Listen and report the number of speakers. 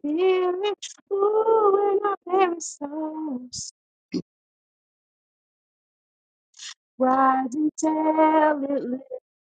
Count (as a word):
one